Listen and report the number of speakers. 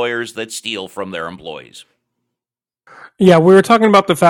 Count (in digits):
2